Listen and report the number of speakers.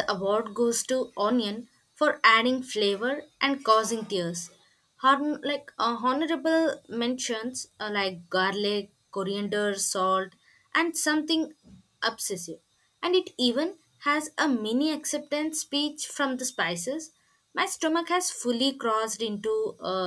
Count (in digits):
1